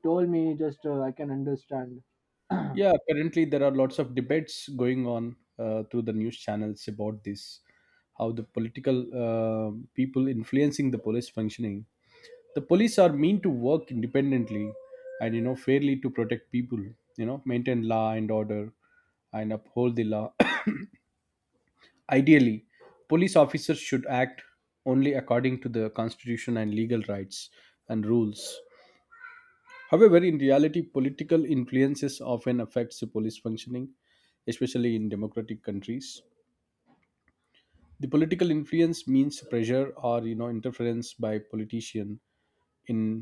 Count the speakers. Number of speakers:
two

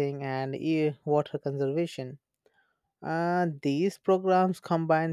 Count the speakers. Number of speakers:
one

